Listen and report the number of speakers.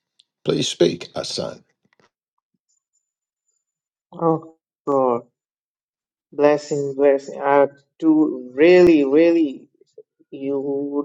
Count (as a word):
two